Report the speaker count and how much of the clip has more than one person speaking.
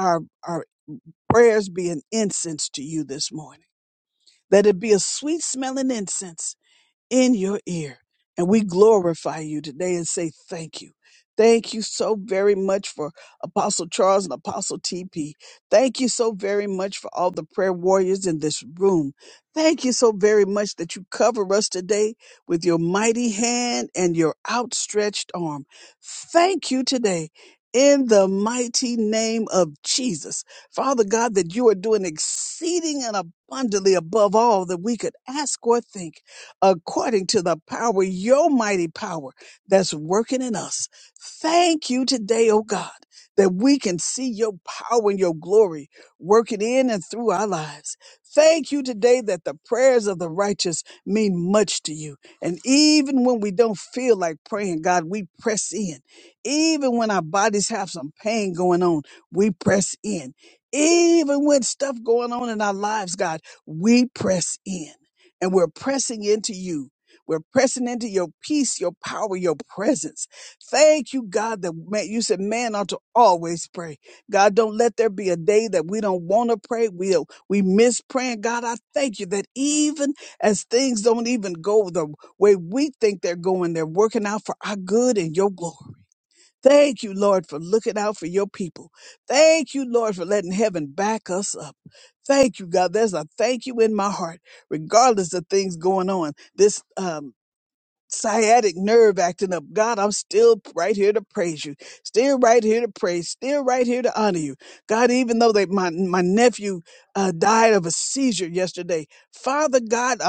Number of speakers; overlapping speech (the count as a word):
one, no overlap